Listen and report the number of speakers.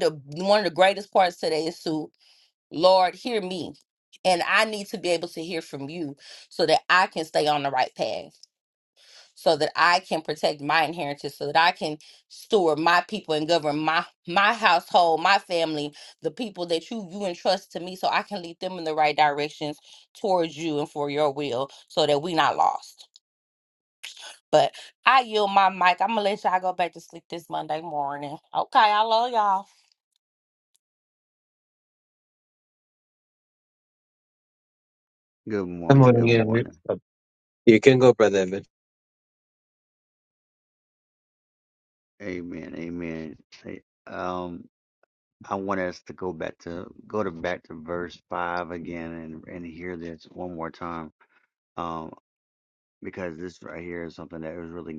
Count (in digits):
3